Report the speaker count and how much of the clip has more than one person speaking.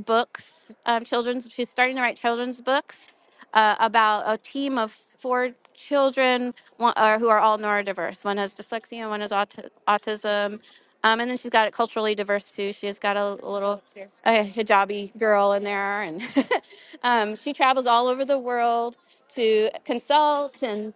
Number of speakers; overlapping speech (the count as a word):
one, no overlap